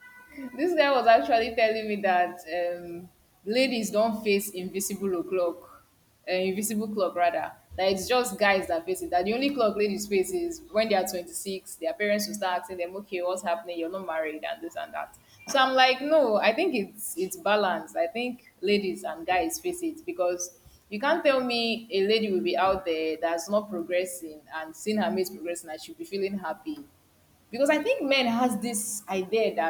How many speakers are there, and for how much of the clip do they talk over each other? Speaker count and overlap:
one, no overlap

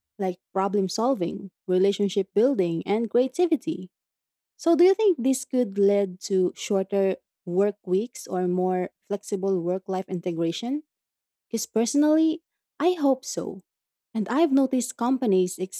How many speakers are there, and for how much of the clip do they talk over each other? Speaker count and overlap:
one, no overlap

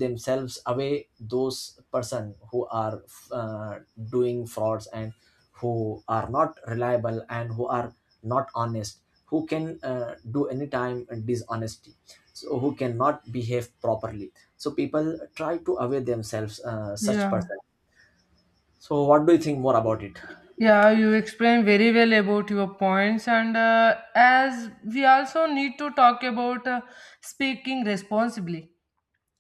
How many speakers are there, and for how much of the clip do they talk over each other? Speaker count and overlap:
two, about 1%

